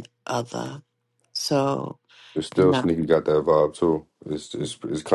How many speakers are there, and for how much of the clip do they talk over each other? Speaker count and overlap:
2, about 7%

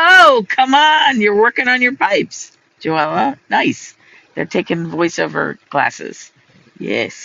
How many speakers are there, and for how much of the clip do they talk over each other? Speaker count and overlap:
1, no overlap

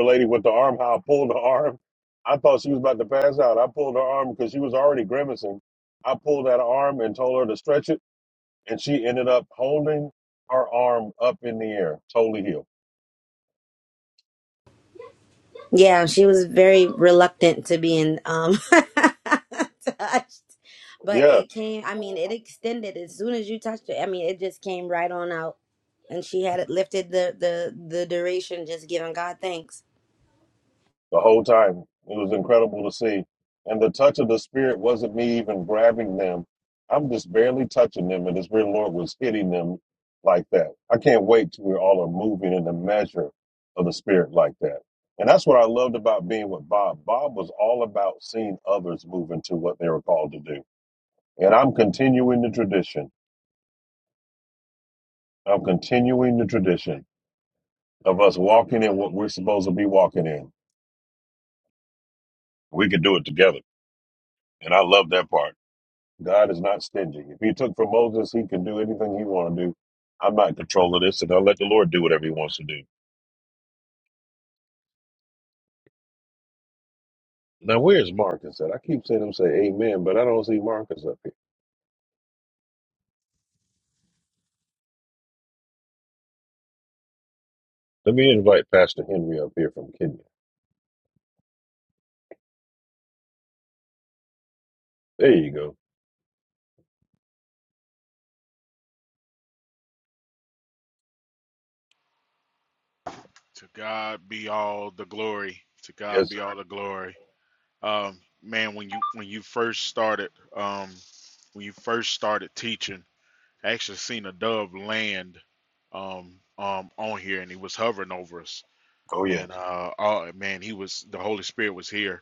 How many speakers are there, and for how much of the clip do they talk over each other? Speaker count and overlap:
3, about 1%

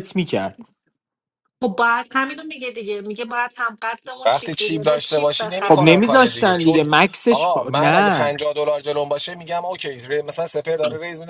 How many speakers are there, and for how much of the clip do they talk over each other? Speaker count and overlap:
3, about 33%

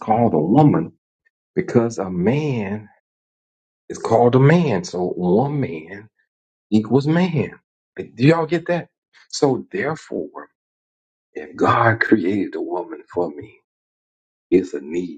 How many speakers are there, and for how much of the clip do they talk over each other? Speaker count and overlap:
1, no overlap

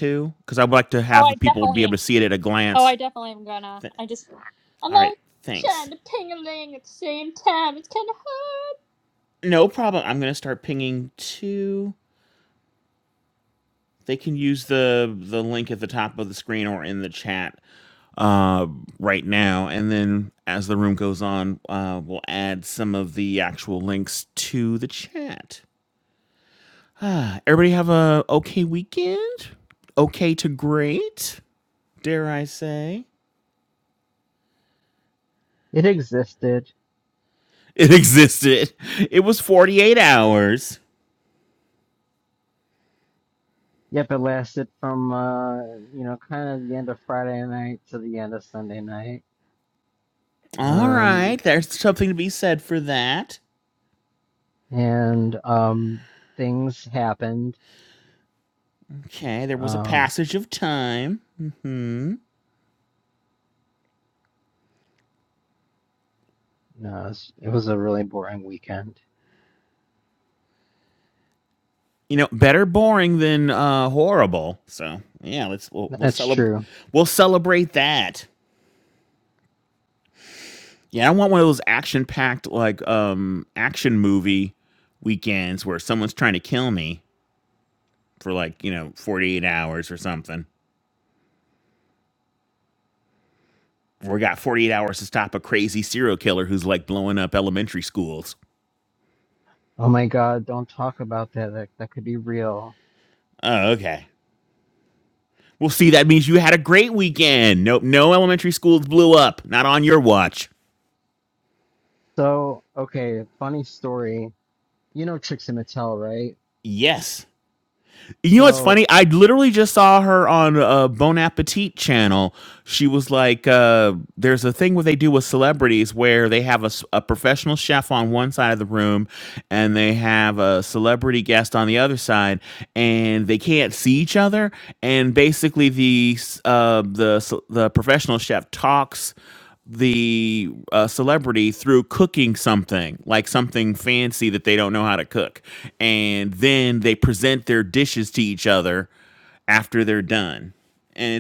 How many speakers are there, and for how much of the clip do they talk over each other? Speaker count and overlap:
3, about 2%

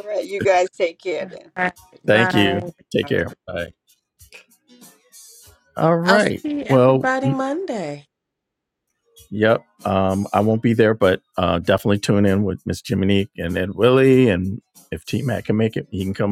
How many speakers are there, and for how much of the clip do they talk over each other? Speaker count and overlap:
3, about 11%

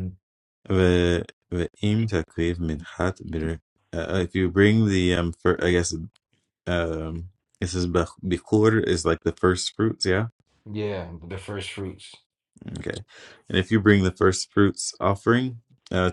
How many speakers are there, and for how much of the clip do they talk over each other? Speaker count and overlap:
2, no overlap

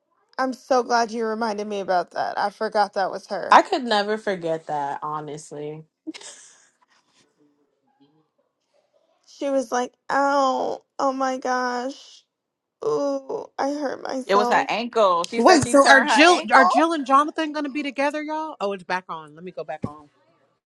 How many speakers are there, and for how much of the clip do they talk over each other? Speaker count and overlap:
4, about 9%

